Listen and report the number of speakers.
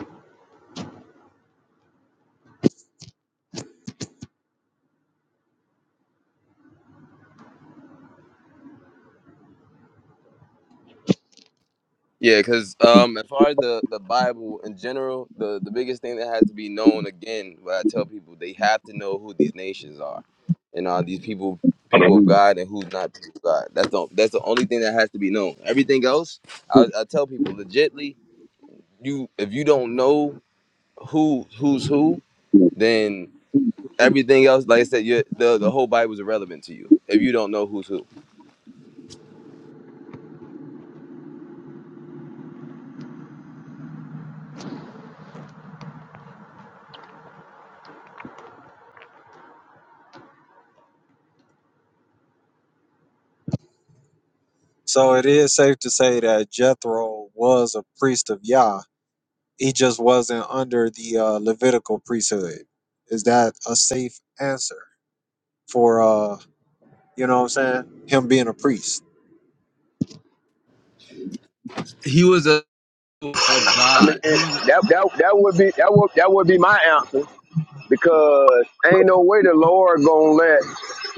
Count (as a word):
three